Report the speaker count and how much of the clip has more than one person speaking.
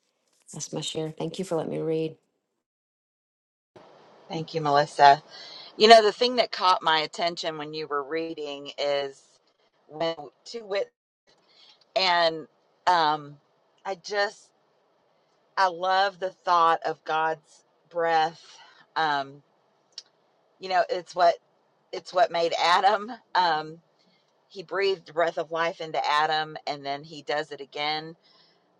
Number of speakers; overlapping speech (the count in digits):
2, no overlap